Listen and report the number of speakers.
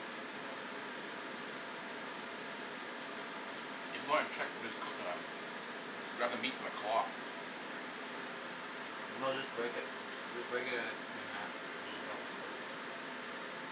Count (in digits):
2